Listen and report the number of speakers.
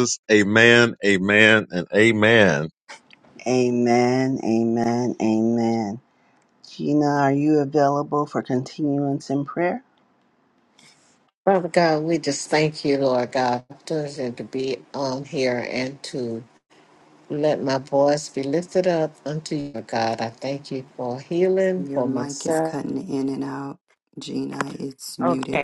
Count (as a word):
four